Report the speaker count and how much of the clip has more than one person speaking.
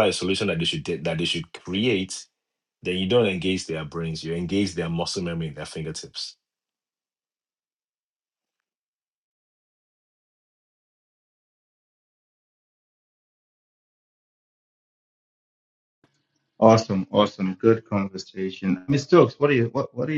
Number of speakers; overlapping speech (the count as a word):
two, no overlap